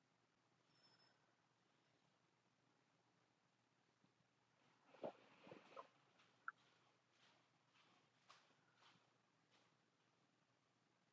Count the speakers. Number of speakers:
0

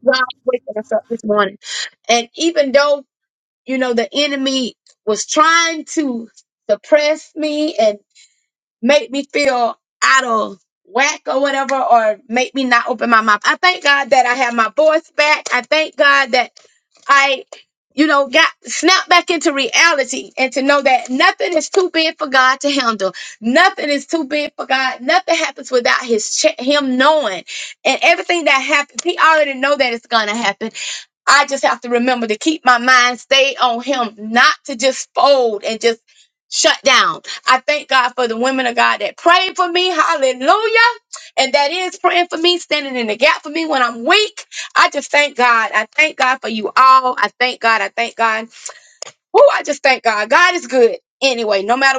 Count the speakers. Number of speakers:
1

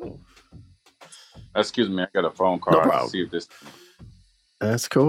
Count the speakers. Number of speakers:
2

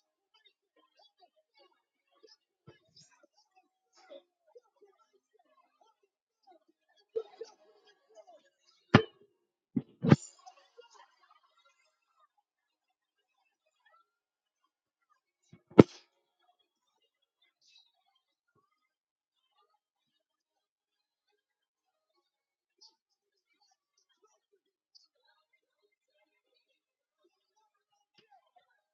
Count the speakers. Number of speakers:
0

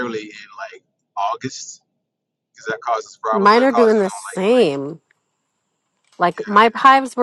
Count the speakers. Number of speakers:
2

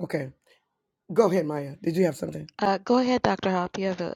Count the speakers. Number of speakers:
2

